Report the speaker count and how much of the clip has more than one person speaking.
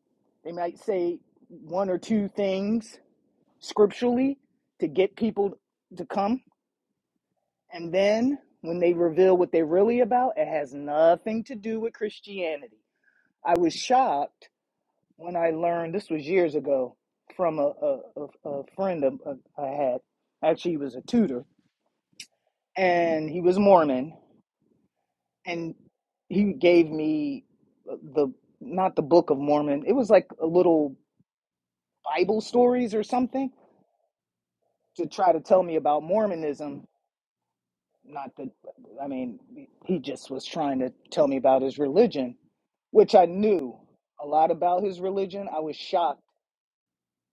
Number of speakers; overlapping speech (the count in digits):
1, no overlap